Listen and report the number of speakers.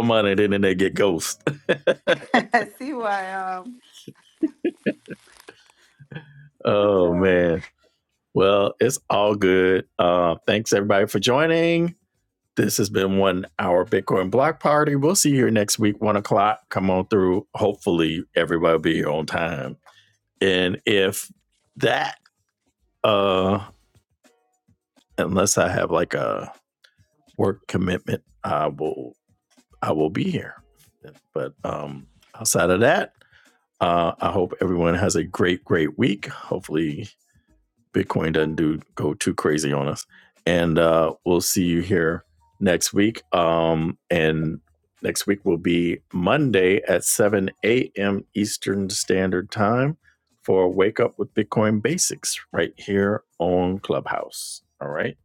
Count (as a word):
two